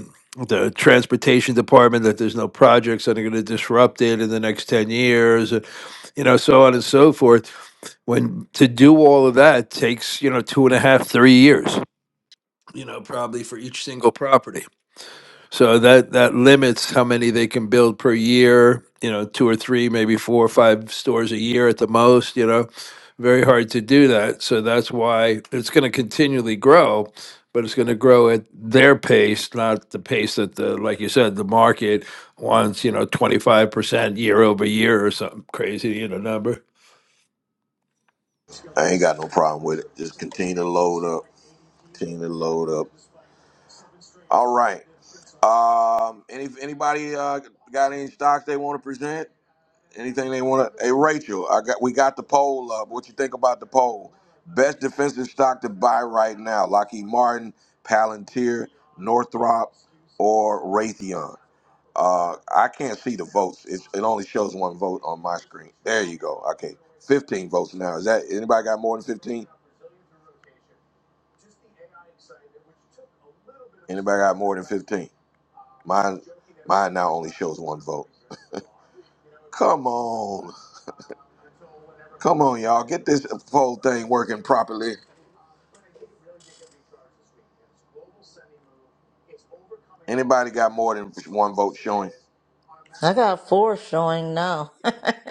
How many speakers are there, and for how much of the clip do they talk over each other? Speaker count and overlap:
three, no overlap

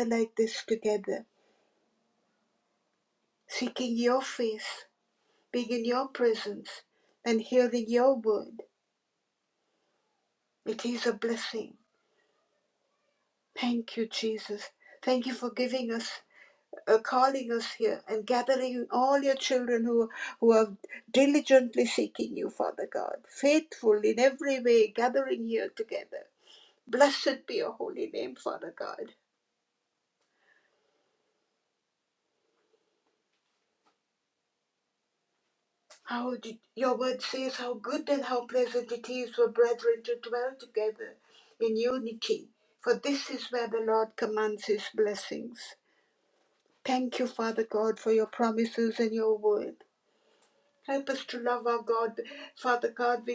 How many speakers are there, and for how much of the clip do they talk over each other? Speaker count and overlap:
one, no overlap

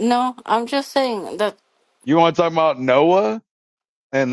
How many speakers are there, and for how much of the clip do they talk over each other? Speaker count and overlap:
two, no overlap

